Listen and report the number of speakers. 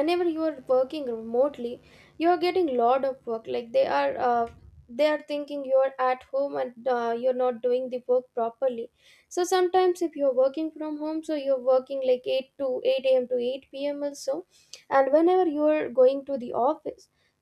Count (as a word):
one